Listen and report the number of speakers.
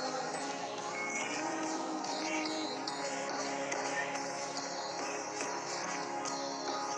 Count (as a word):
zero